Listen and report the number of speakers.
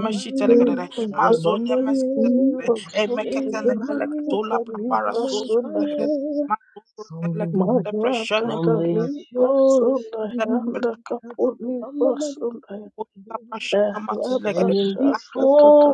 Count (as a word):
three